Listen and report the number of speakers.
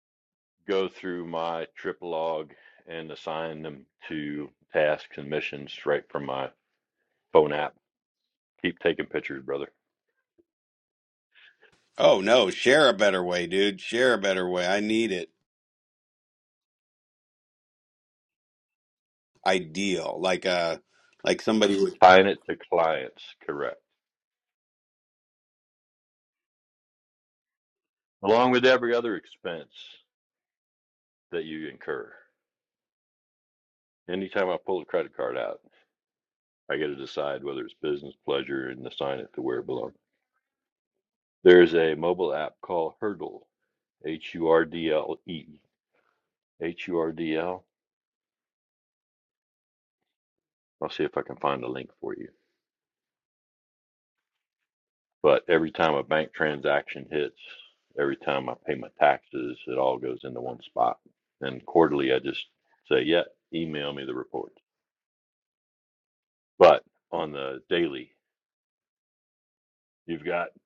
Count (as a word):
two